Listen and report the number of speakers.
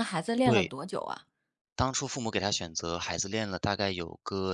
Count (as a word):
two